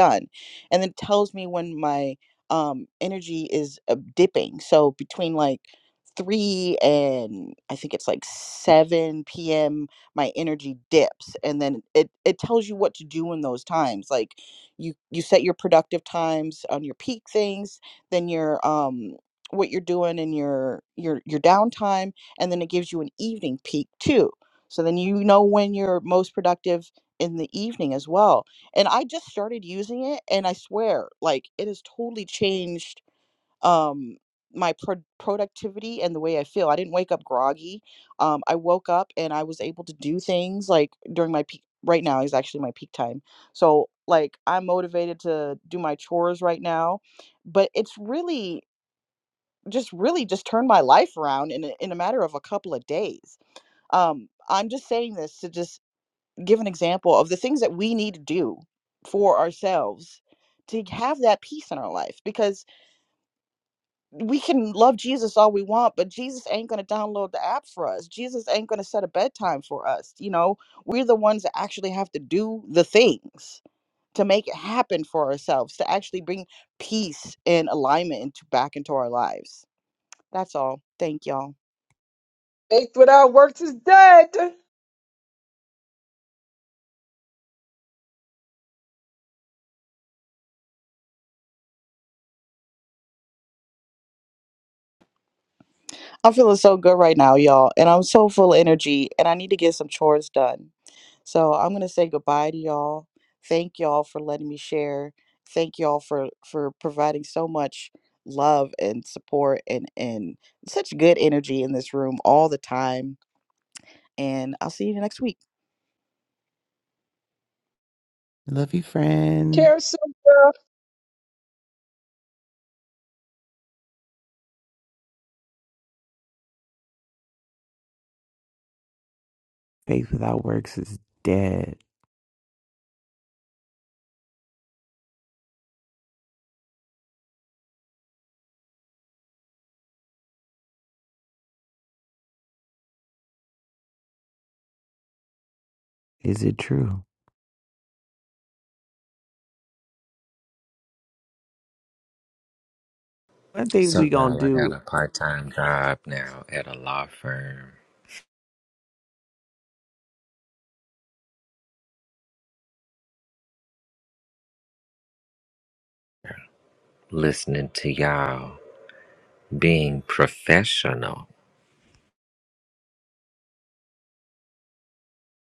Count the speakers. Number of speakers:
4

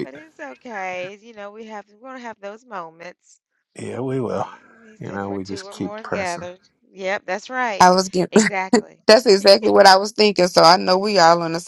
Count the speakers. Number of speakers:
3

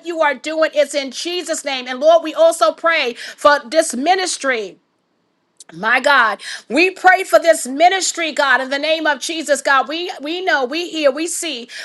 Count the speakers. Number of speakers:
1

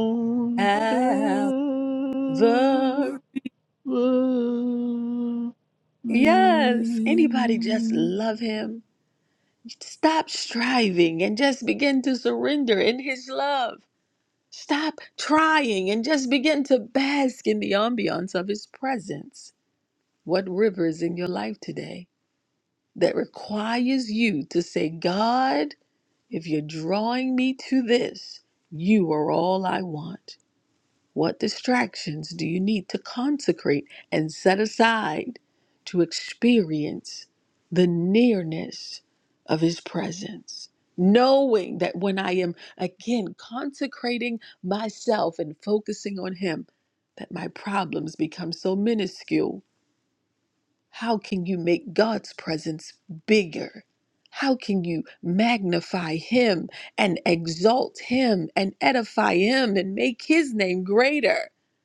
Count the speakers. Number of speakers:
2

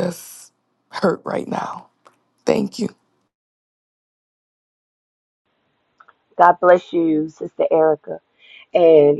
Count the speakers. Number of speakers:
2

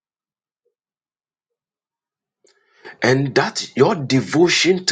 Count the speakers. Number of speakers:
1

